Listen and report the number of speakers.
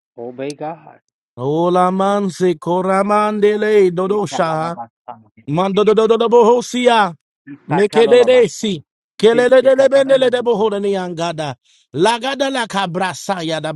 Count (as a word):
two